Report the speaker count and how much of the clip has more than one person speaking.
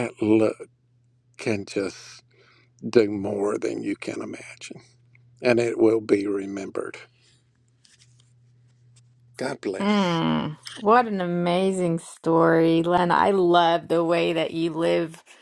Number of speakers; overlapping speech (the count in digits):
2, about 2%